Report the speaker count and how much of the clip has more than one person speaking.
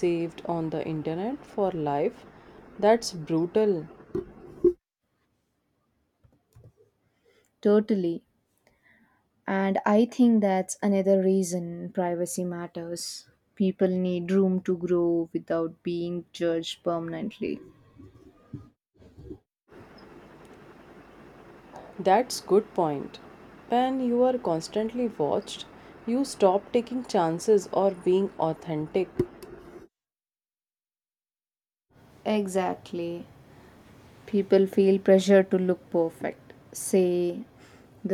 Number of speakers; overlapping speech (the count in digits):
2, no overlap